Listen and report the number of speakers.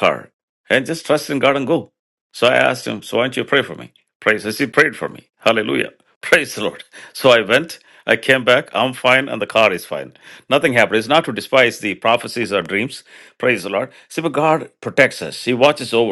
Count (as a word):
one